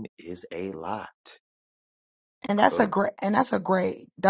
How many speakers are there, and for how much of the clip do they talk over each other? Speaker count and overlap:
2, about 6%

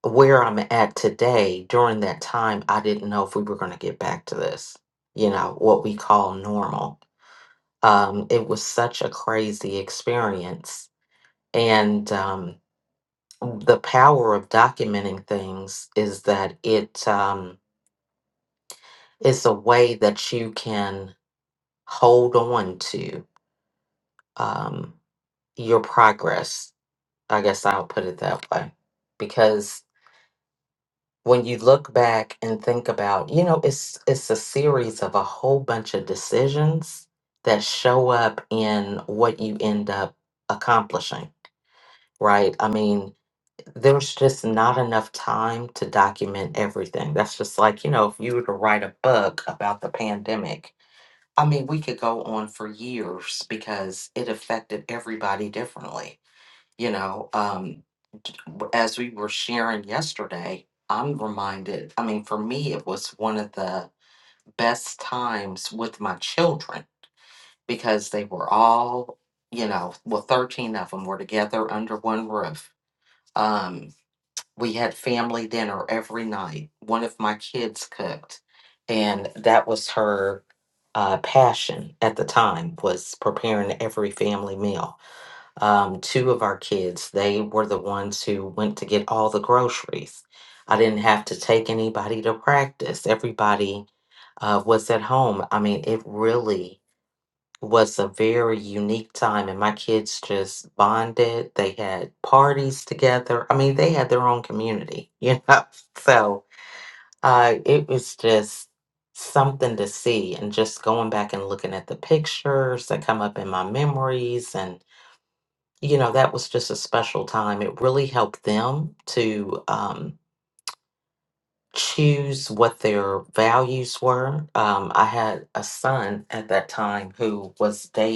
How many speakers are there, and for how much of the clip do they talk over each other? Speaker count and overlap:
1, no overlap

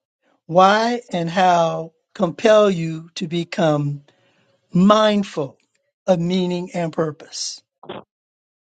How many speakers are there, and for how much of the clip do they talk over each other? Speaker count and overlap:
1, no overlap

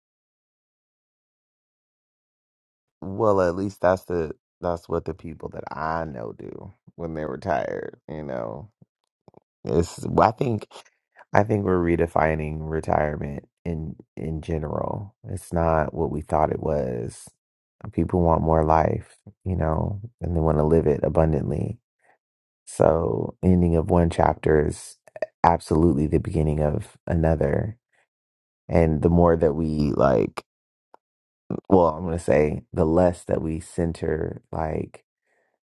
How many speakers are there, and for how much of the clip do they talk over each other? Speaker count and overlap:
1, no overlap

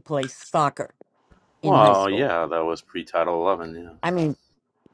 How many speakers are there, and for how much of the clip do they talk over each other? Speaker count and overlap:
2, about 12%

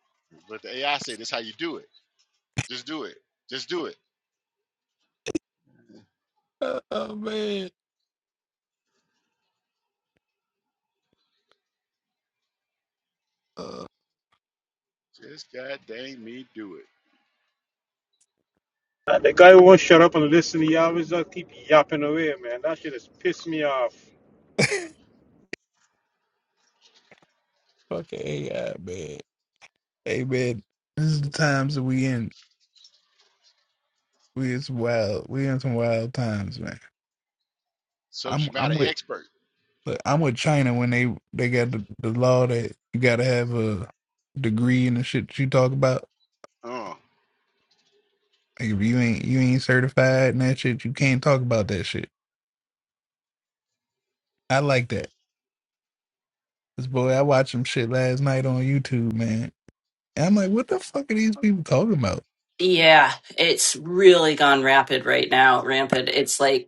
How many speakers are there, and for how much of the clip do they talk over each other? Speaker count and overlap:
4, about 1%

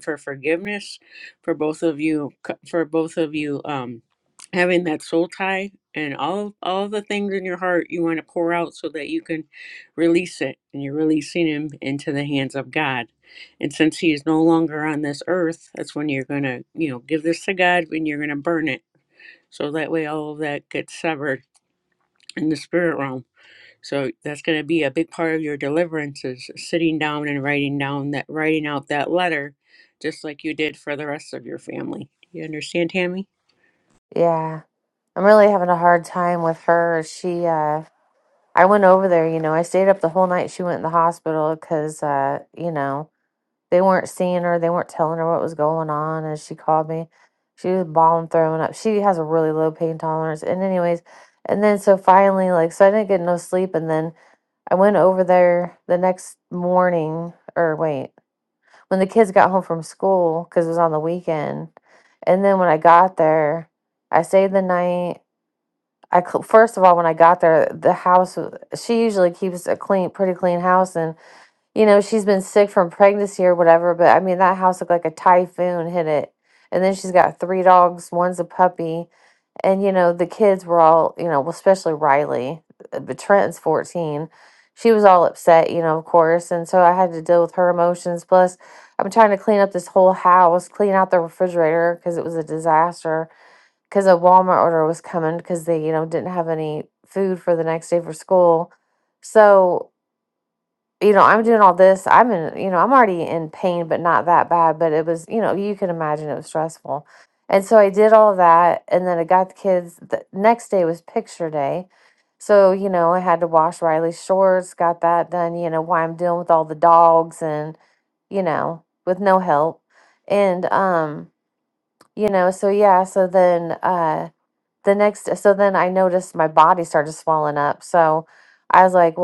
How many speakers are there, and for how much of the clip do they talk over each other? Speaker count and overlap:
2, no overlap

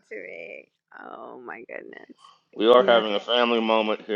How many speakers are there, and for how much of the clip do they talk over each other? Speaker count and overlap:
2, about 8%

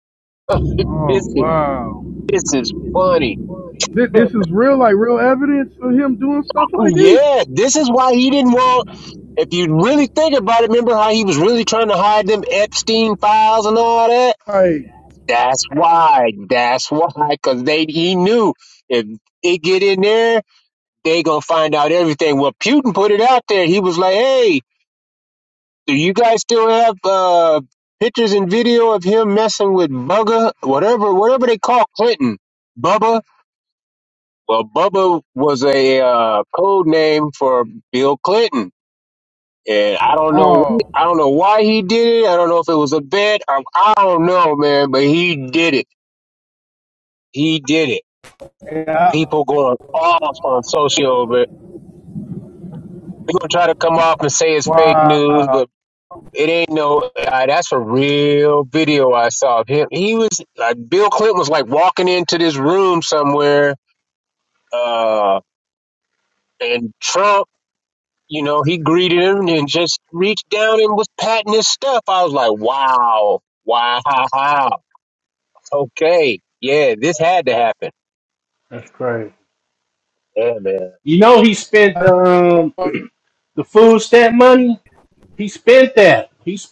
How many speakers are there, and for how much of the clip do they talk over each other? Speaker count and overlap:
3, about 3%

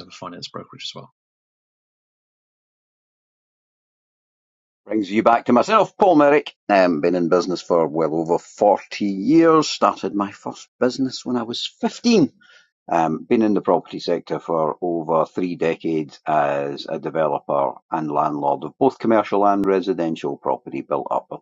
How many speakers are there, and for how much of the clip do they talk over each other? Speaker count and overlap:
2, no overlap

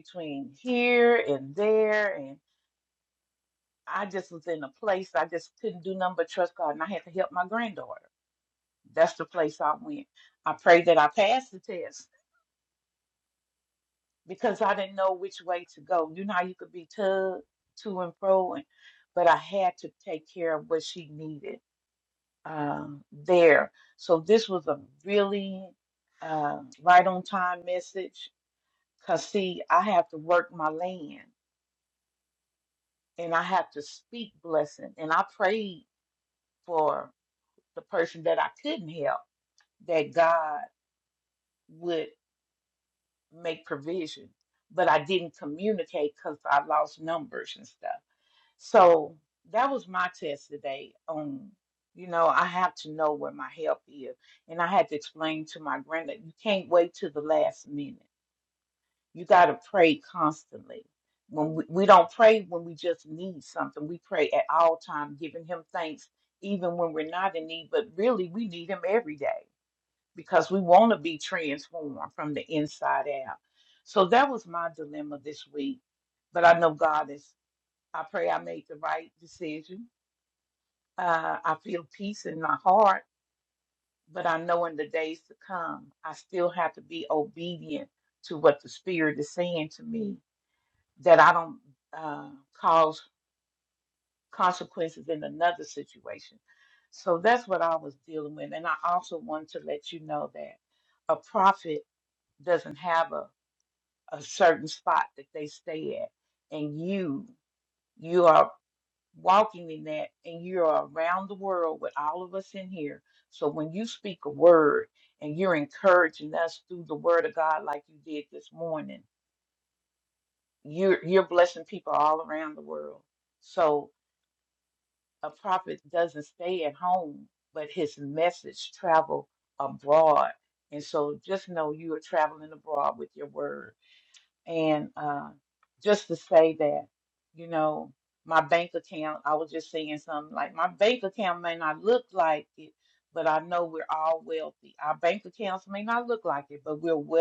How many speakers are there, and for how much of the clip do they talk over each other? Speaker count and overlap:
1, no overlap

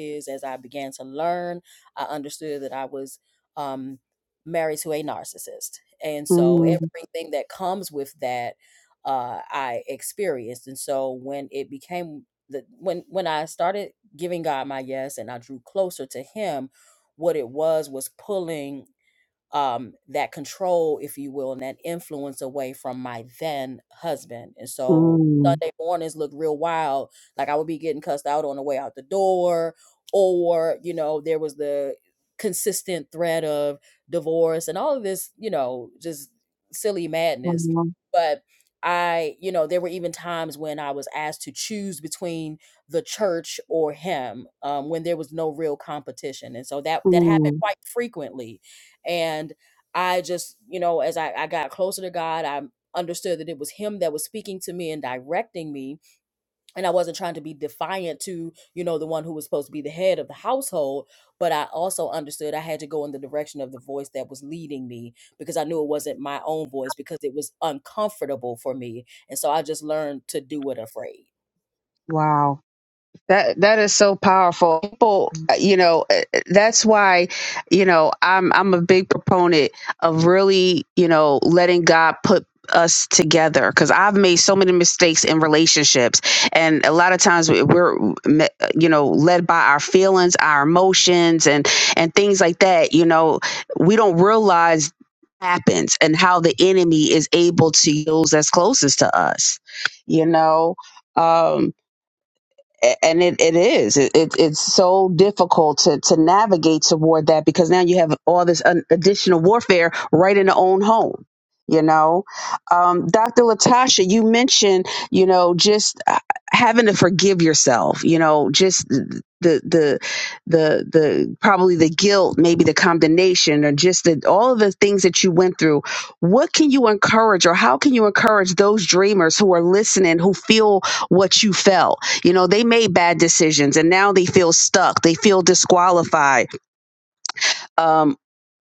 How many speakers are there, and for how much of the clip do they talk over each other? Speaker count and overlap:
2, about 1%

